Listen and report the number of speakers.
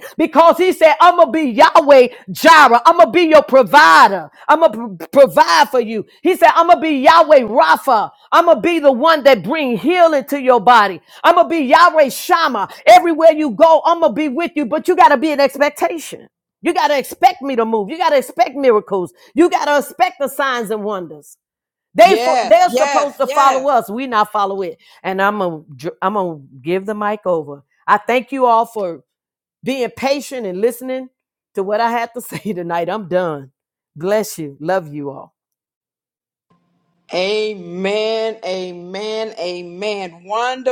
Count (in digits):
2